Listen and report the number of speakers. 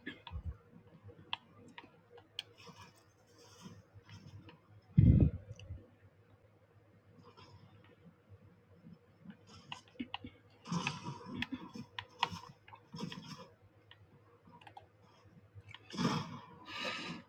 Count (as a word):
zero